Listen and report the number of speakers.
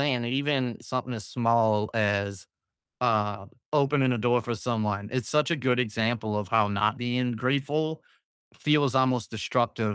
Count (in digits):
1